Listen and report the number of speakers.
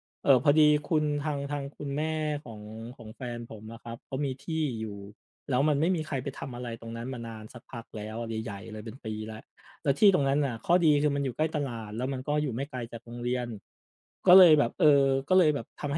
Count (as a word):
one